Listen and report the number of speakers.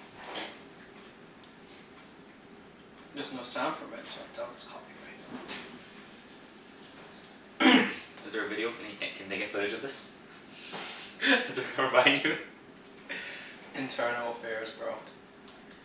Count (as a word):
two